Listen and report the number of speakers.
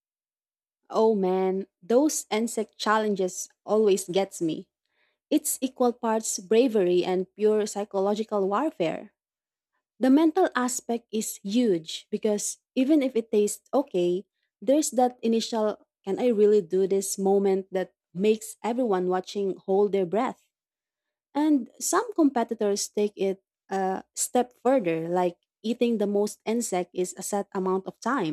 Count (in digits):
1